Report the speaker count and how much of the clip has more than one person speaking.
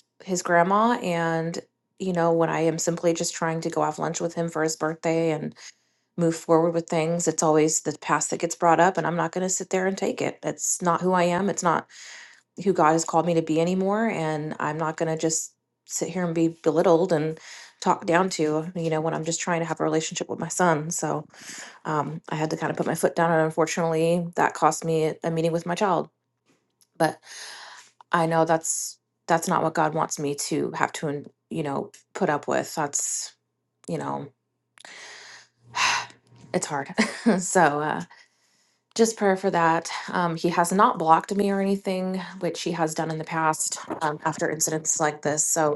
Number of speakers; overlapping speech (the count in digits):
1, no overlap